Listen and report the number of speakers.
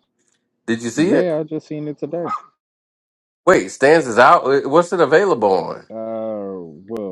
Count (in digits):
2